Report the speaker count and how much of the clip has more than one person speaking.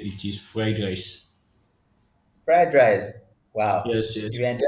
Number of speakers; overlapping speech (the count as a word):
two, about 5%